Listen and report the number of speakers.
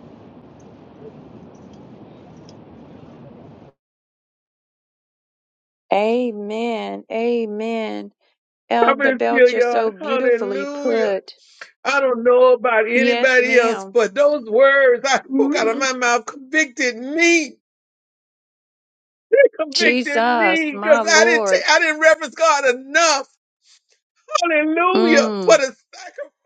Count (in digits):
2